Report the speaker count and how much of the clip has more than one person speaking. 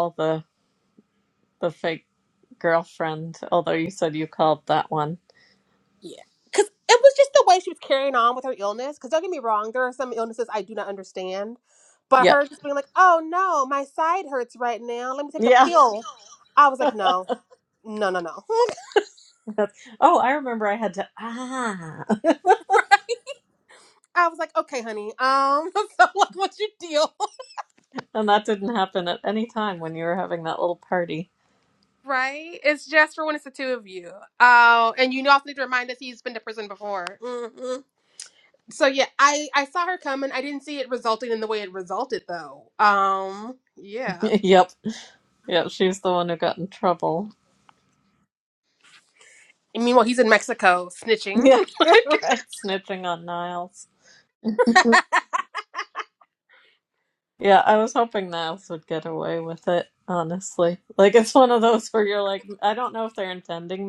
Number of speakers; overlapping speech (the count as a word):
two, about 1%